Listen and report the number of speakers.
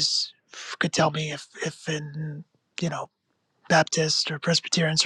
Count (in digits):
1